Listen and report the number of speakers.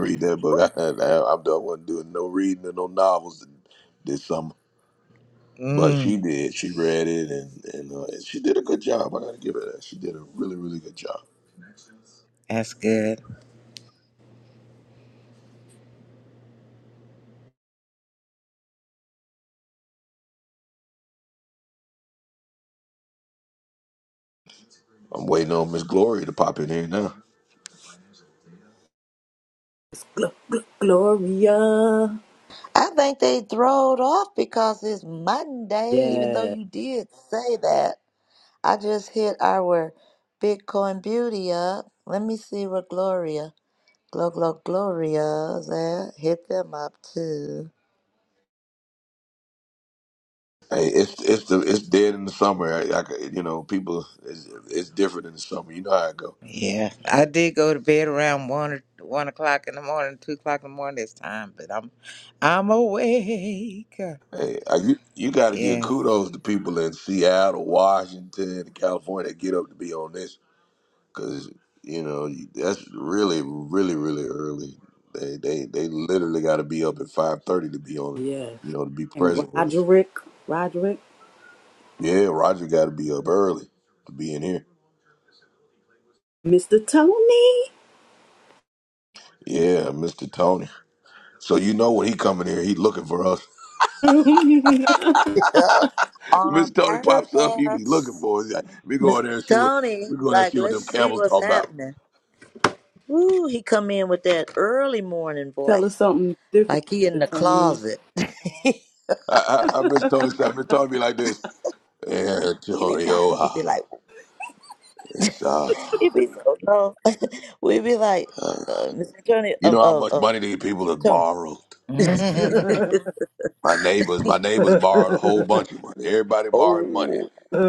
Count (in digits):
4